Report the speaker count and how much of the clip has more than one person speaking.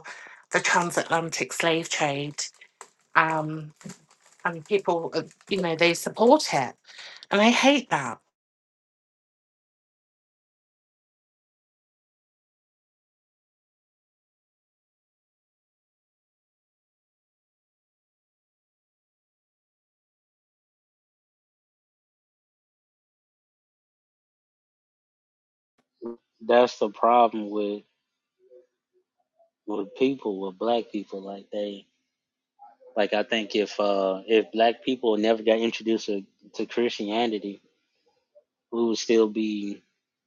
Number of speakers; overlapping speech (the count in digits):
2, no overlap